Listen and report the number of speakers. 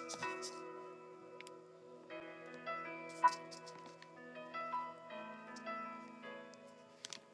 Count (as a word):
zero